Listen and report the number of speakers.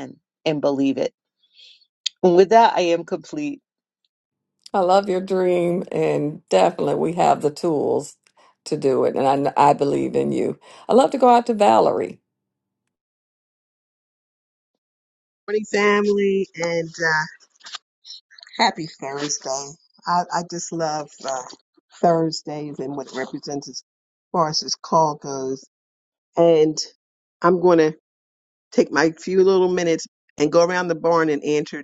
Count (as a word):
three